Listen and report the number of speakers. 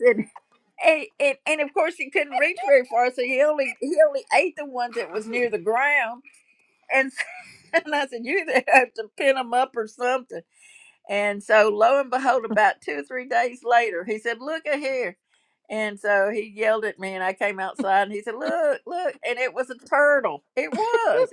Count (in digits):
1